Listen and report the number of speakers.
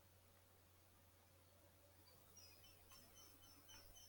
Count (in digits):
0